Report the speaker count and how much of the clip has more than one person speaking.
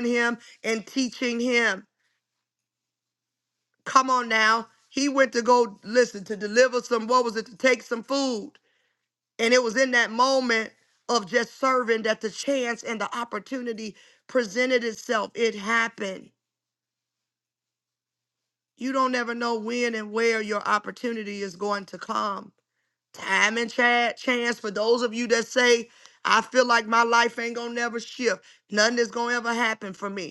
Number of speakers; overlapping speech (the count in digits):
1, no overlap